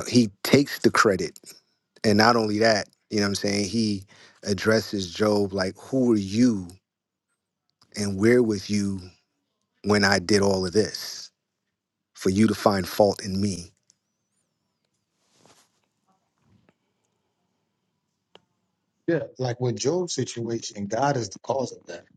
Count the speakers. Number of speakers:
2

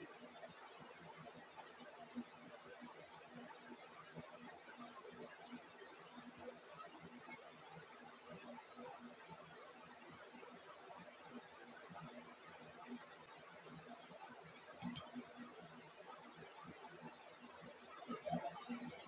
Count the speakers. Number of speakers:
0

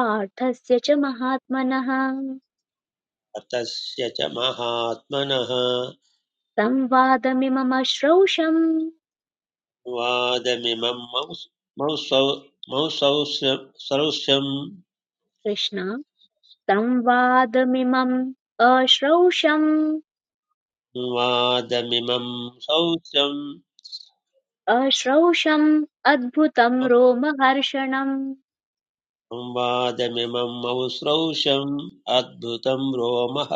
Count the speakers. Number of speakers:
2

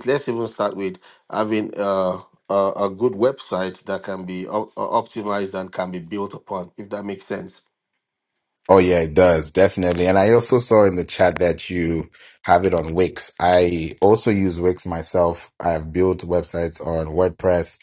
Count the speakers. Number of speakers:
2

